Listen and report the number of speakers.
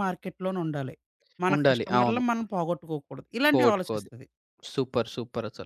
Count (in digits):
2